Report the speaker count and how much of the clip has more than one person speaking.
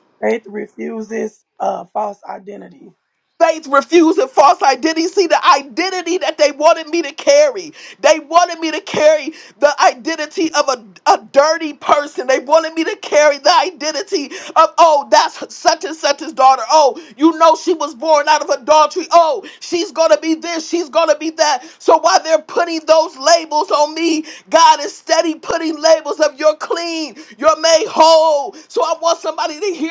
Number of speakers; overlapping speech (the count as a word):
two, no overlap